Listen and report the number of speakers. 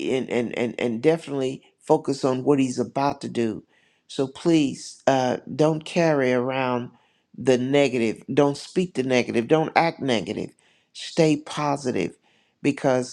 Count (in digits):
1